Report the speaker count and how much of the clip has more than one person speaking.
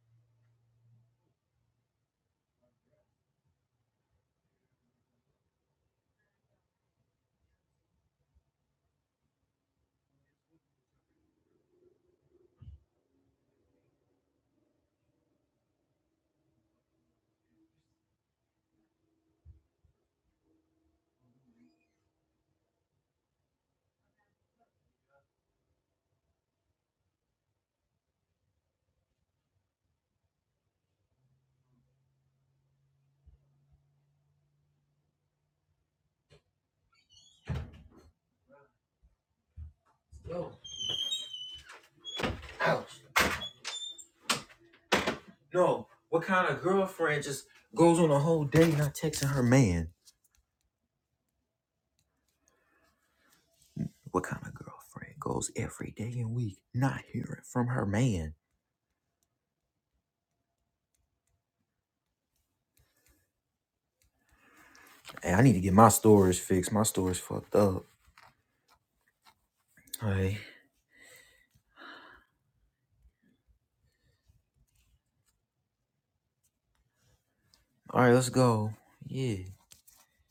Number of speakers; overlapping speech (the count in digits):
1, no overlap